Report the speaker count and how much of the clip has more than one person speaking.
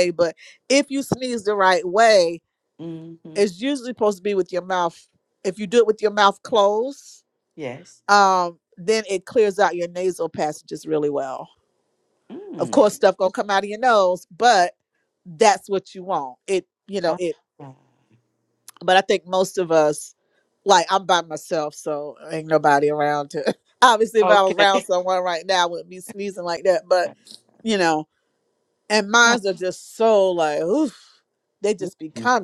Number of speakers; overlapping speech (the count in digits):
2, about 4%